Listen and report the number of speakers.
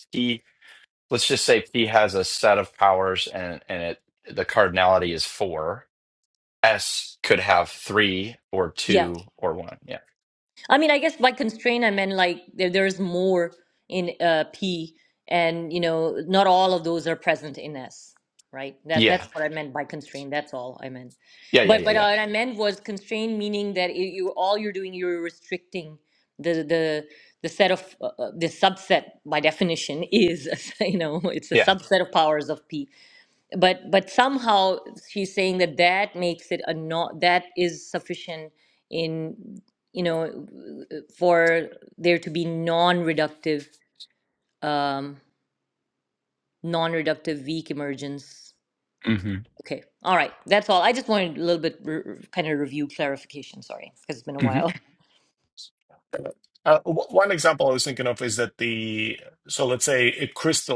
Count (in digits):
3